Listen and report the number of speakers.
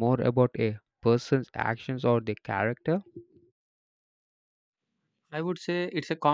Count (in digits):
2